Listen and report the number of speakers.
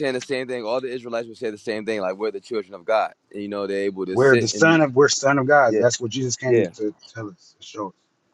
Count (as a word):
two